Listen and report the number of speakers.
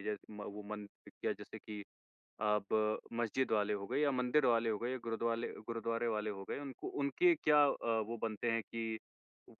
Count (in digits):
1